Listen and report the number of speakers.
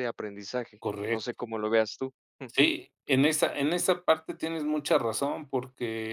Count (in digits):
2